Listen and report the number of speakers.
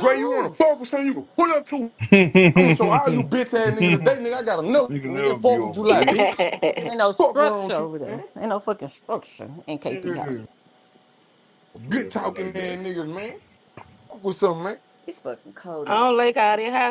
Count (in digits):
4